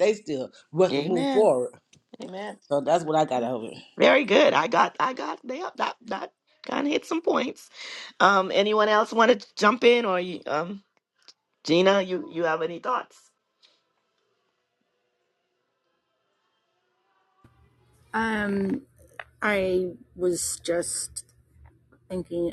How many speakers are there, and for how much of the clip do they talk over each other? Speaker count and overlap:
3, about 3%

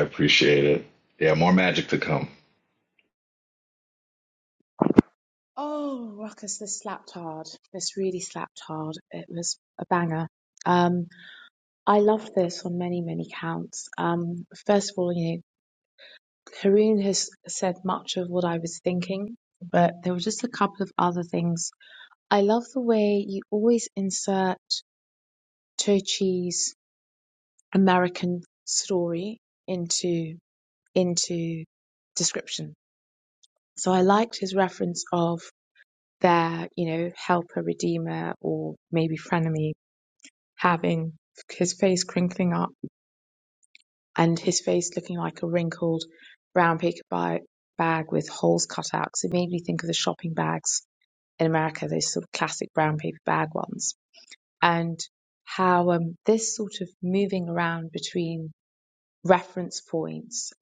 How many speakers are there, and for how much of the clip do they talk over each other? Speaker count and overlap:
2, no overlap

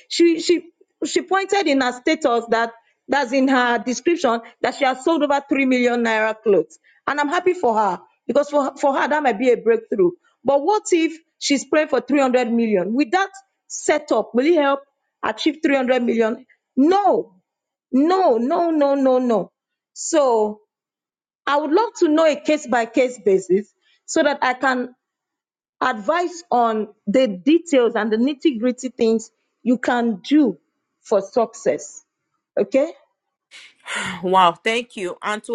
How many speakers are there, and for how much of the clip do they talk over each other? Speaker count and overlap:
2, no overlap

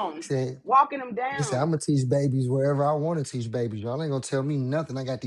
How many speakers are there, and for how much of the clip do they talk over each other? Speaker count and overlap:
2, about 7%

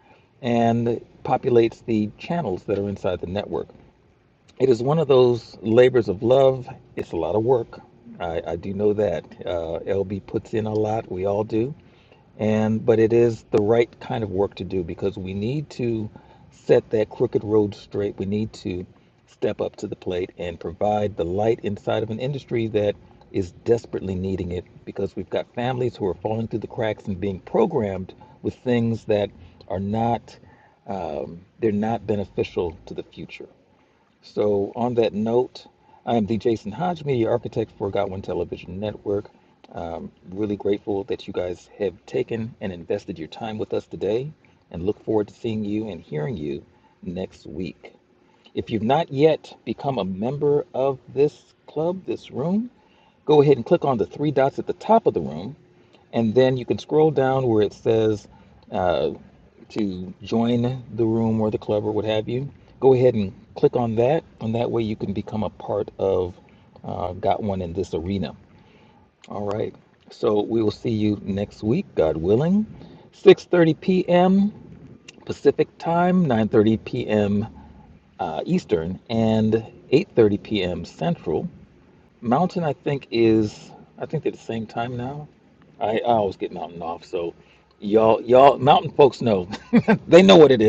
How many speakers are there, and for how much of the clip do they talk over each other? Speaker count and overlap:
1, no overlap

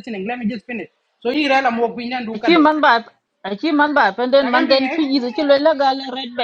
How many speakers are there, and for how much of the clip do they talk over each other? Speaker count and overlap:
2, about 15%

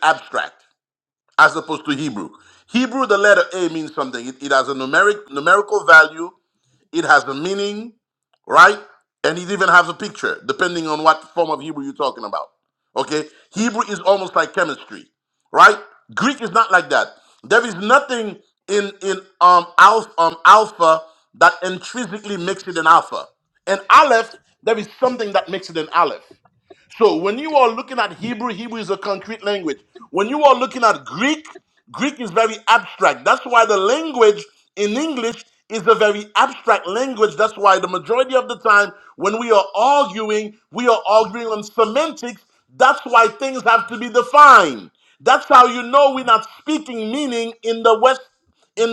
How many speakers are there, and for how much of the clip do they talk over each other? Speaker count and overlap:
1, no overlap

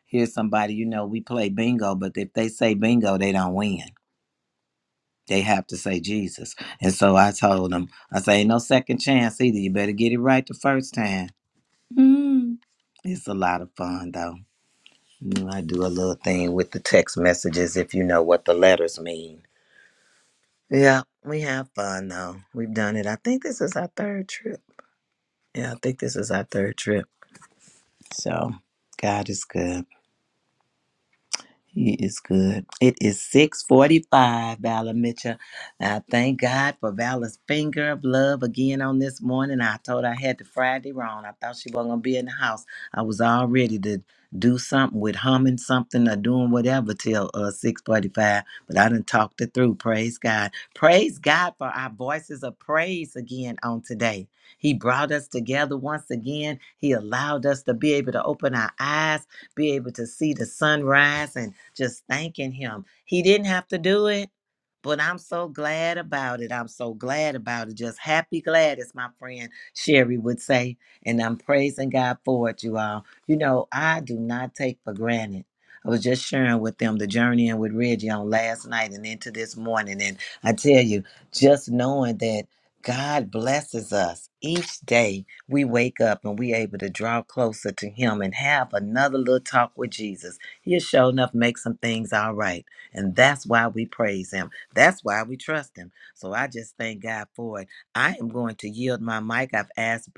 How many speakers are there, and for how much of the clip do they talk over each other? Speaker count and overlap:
1, no overlap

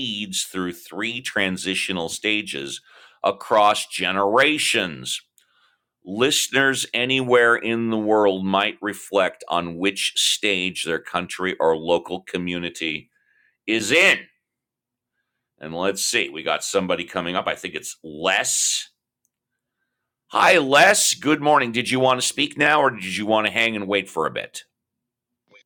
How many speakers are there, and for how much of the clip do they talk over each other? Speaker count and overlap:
1, no overlap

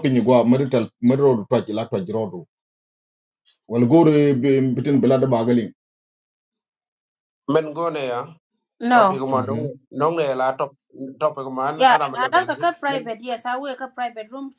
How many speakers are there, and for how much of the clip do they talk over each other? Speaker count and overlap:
3, about 13%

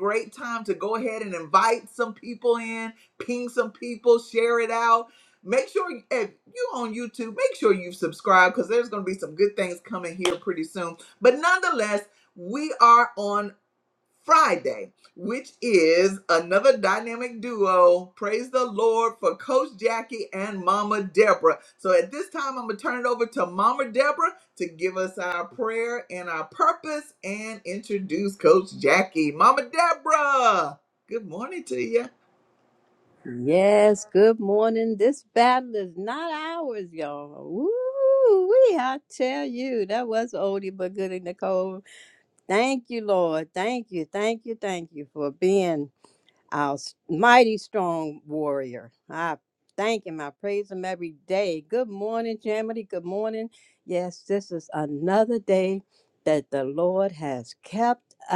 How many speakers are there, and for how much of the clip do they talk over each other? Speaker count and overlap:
2, no overlap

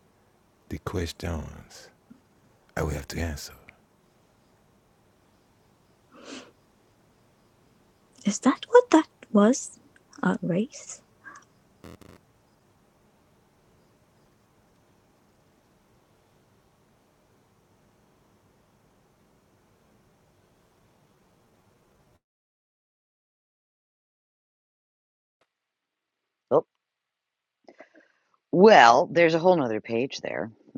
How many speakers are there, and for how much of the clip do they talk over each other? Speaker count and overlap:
3, no overlap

